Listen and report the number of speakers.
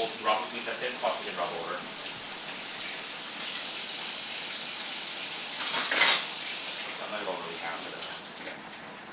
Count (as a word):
one